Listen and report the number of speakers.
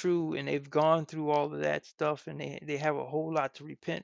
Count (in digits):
1